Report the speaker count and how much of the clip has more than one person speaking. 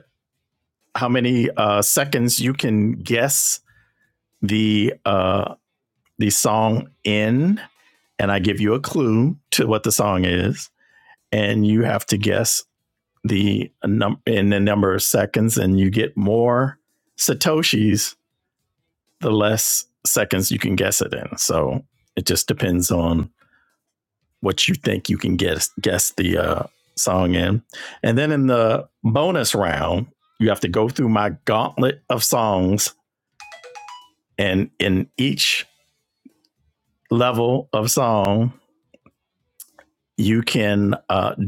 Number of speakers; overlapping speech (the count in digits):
1, no overlap